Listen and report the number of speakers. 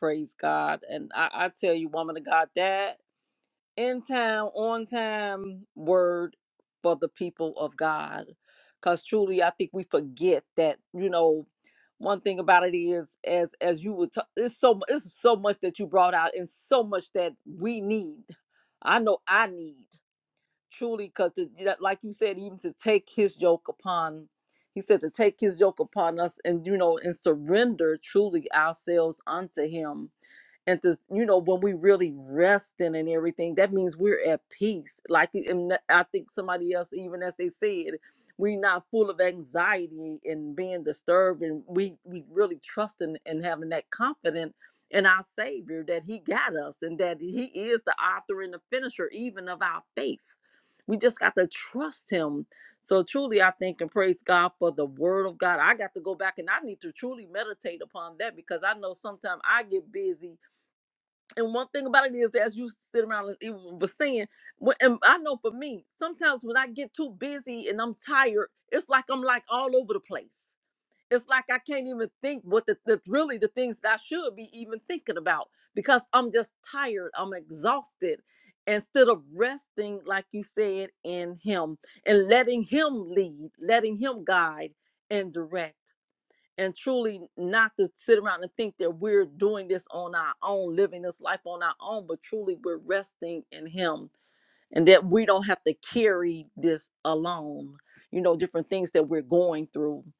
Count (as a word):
one